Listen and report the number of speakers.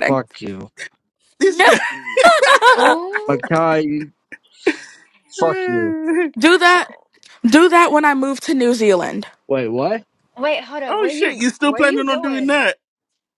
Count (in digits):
4